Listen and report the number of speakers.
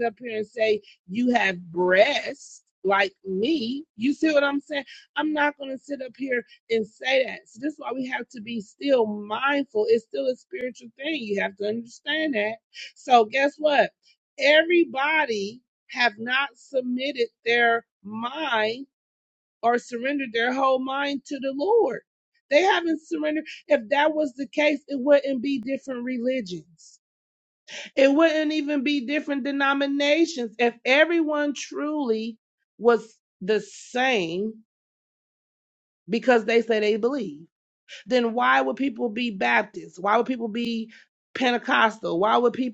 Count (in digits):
1